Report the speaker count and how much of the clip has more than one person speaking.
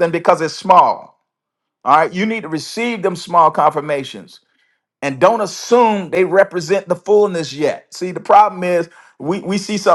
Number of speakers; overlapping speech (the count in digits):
1, no overlap